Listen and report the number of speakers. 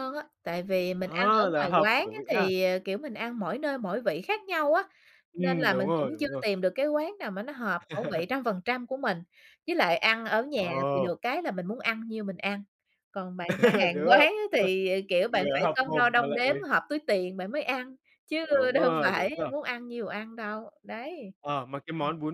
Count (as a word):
two